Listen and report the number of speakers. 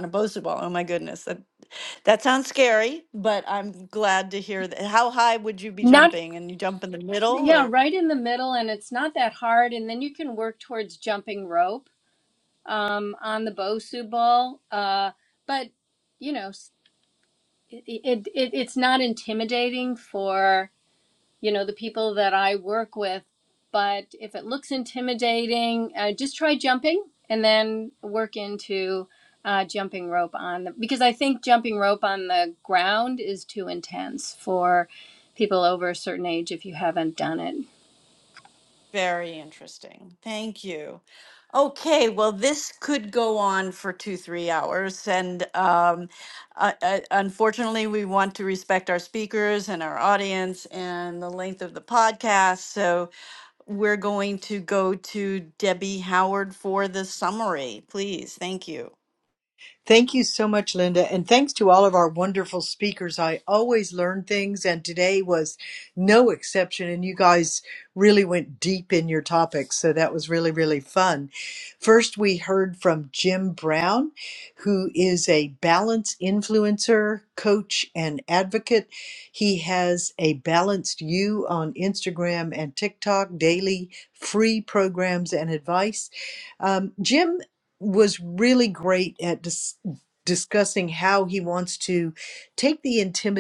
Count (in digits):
3